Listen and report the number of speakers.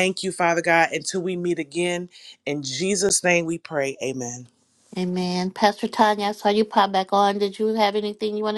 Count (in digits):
2